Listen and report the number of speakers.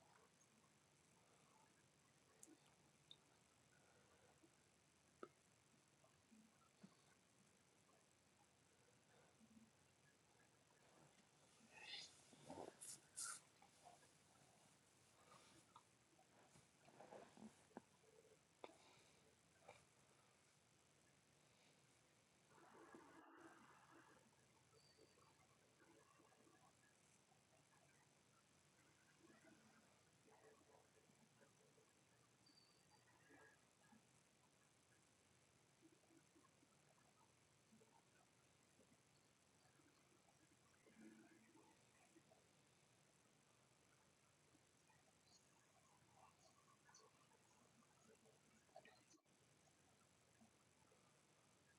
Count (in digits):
0